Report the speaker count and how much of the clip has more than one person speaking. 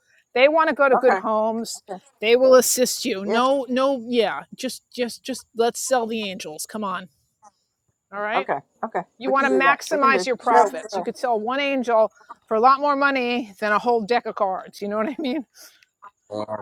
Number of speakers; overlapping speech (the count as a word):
two, about 15%